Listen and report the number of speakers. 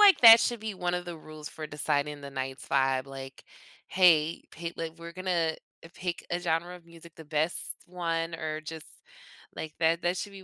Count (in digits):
1